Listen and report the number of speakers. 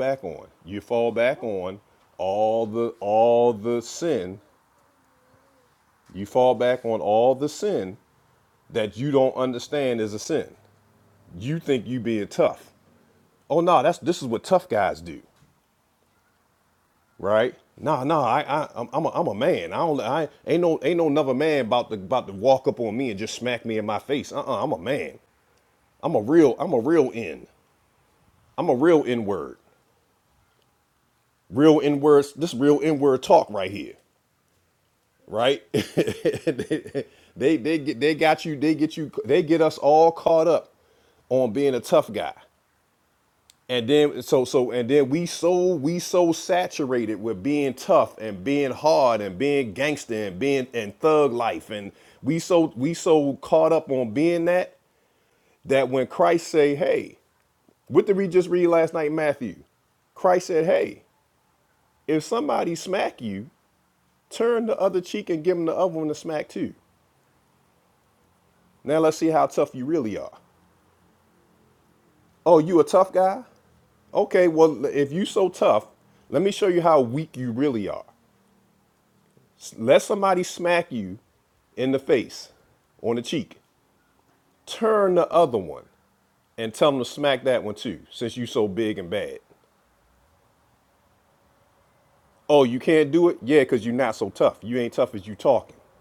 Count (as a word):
one